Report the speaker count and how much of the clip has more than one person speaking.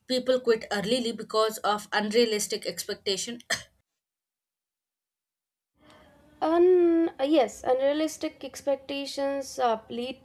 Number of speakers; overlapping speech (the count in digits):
2, no overlap